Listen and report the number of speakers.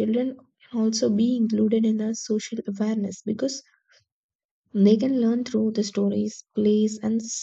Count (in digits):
1